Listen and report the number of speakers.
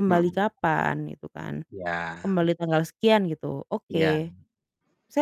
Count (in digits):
2